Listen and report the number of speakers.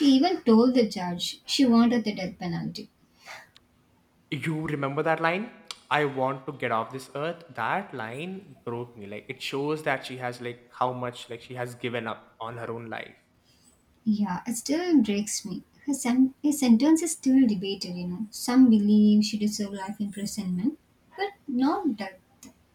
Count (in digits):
2